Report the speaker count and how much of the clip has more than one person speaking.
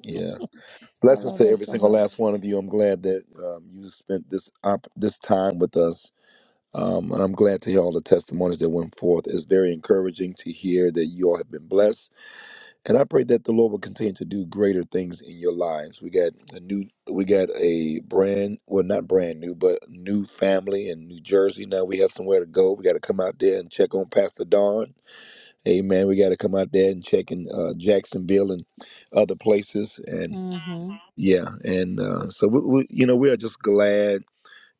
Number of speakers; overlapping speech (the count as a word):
two, about 3%